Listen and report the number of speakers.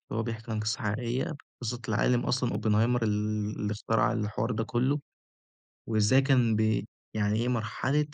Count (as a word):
one